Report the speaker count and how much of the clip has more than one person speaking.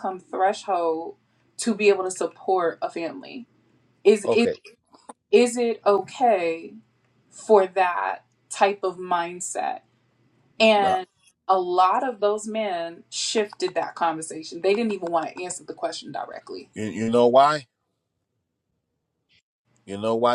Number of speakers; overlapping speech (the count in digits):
2, about 2%